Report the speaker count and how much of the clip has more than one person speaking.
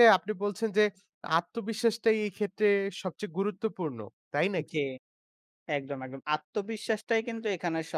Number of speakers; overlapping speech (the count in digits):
2, about 1%